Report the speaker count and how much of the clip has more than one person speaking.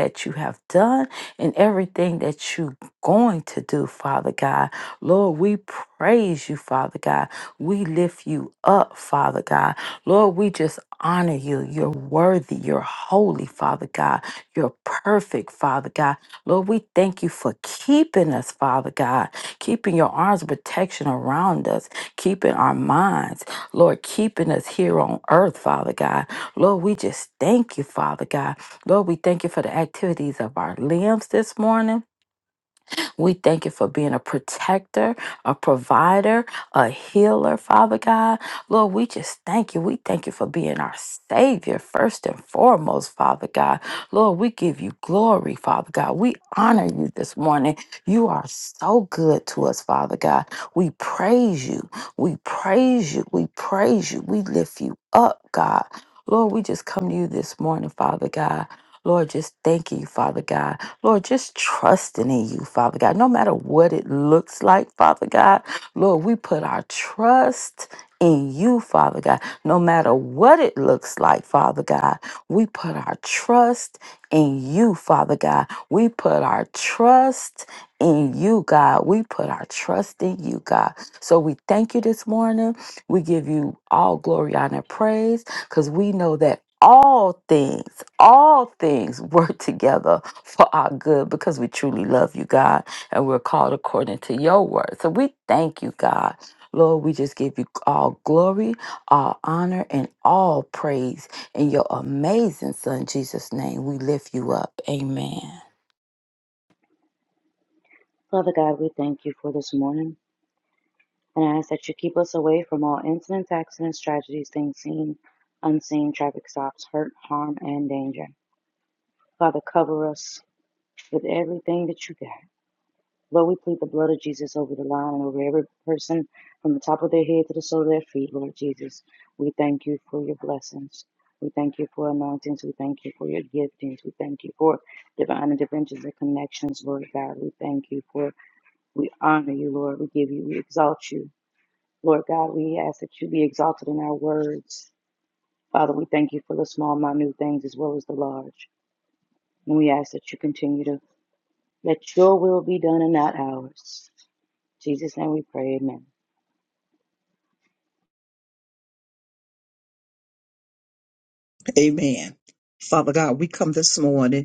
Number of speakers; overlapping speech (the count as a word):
three, no overlap